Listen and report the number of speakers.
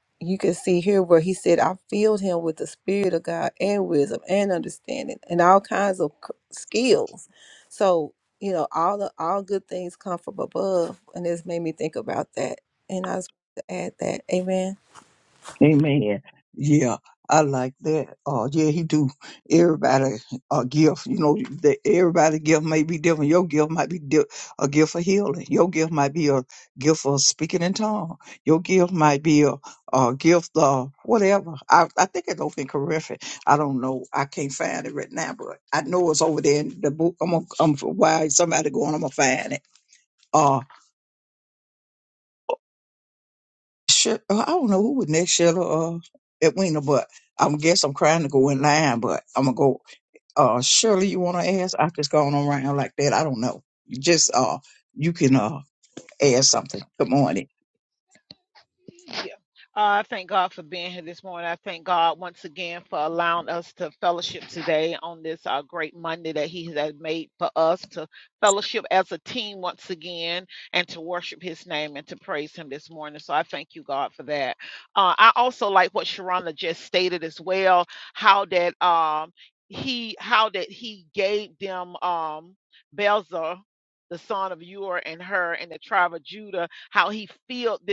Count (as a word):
three